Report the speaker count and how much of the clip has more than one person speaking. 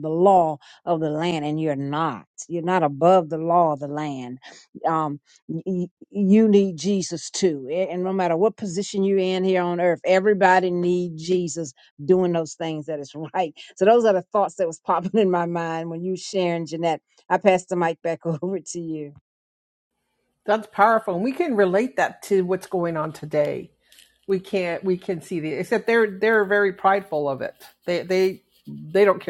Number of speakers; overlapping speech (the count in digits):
2, no overlap